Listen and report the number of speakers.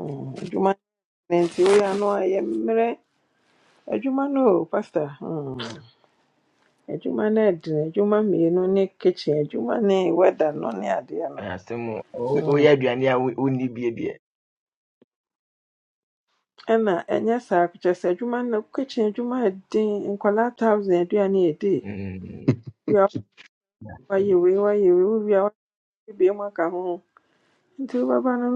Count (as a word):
two